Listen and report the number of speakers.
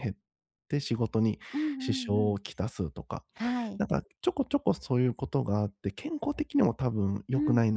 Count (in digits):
2